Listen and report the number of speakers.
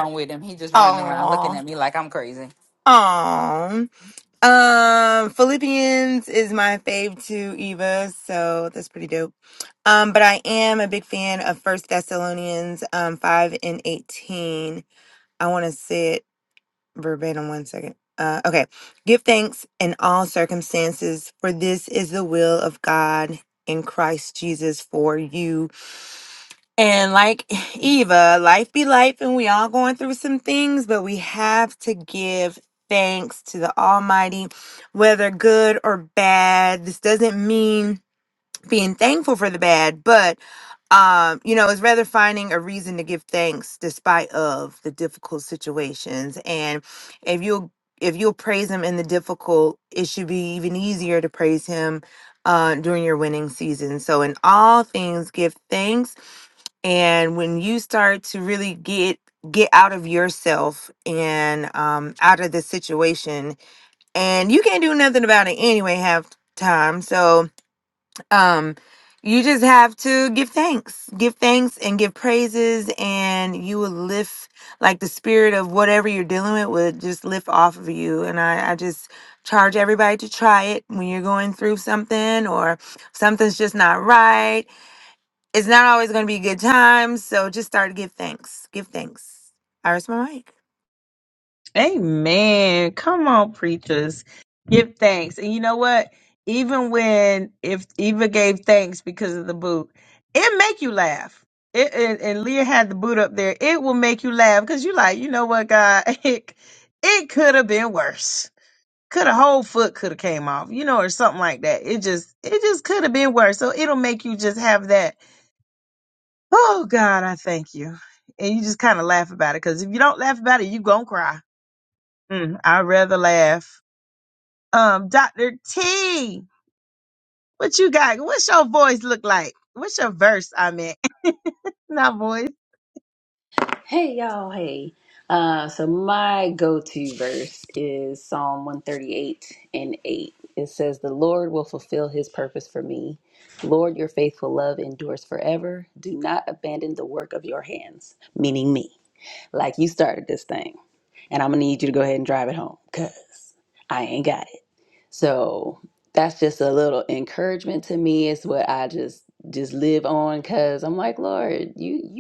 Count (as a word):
four